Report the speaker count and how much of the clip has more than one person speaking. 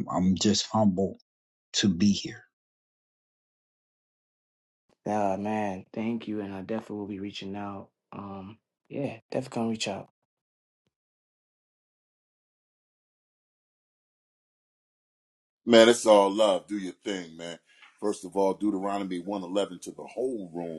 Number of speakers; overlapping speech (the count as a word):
three, no overlap